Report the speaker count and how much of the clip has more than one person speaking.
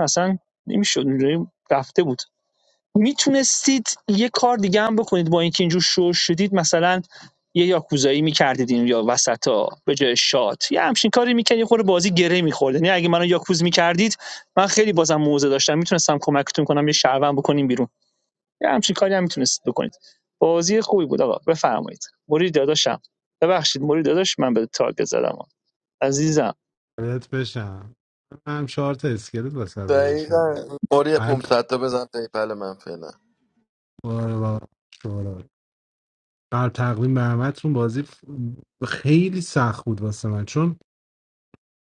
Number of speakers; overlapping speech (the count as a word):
three, about 2%